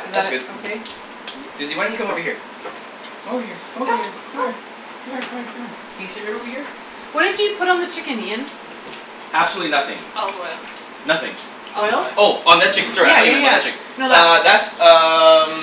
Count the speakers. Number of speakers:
3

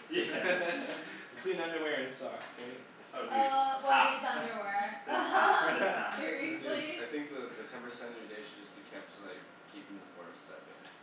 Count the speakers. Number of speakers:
4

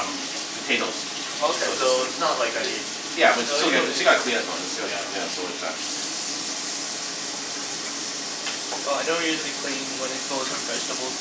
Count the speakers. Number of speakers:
3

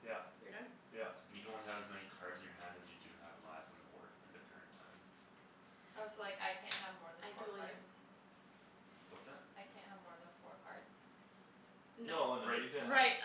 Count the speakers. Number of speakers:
4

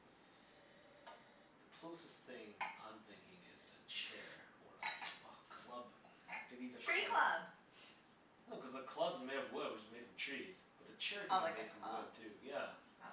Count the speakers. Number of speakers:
2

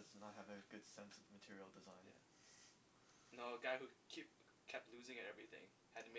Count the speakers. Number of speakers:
2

